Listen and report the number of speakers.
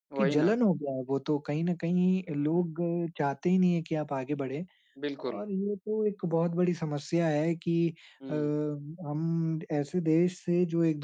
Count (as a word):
two